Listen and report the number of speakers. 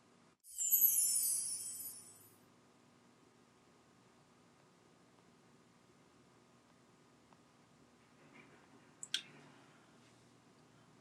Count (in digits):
0